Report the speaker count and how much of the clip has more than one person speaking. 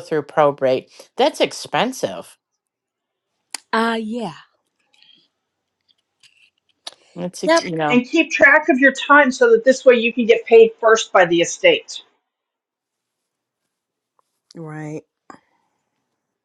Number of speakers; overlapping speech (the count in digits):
3, about 2%